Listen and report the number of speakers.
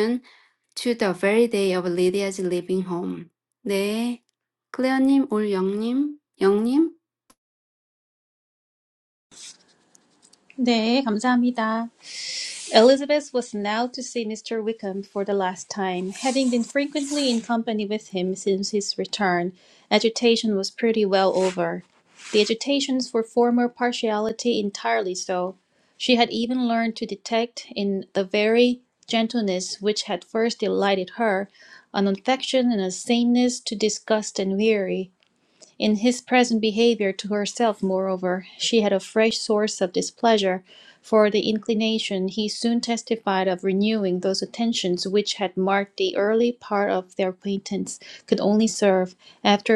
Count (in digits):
2